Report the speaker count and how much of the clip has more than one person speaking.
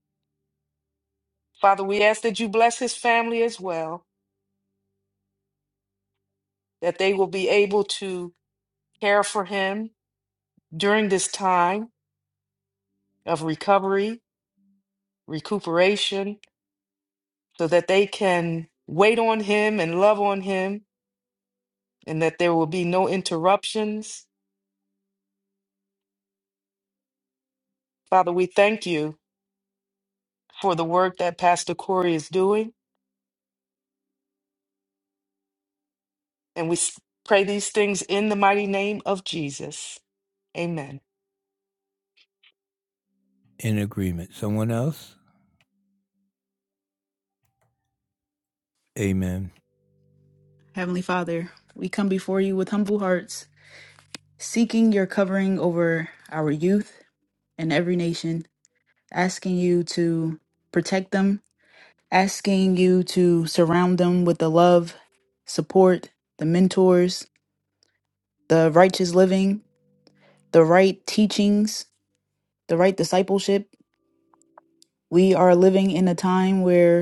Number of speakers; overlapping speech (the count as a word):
three, no overlap